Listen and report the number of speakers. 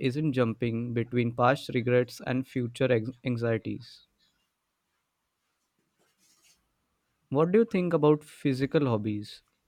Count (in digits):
1